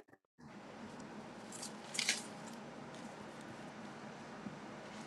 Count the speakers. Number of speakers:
0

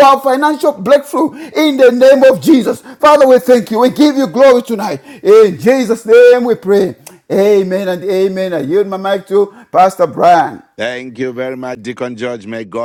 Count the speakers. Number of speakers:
2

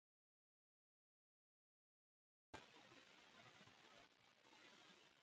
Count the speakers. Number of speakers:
0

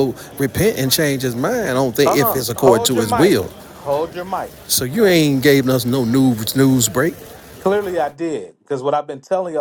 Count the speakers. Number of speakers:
2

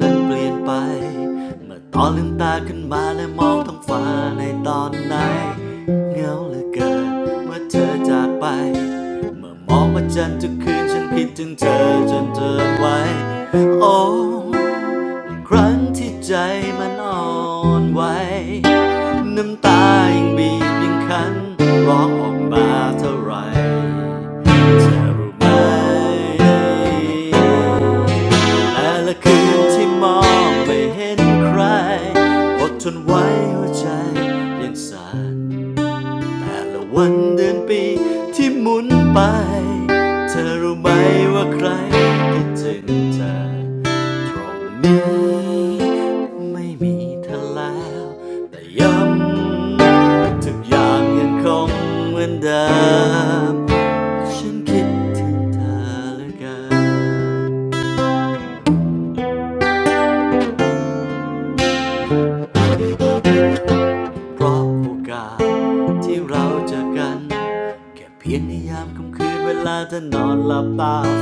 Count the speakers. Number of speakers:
1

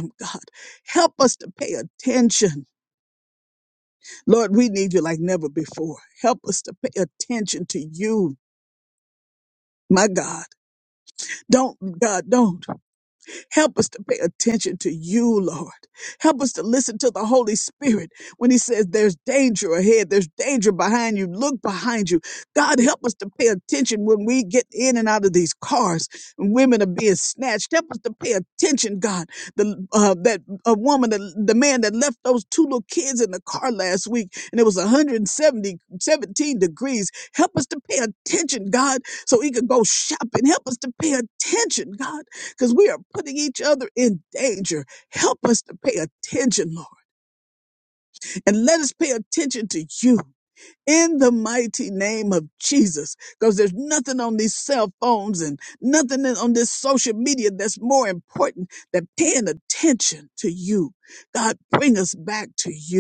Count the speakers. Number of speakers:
1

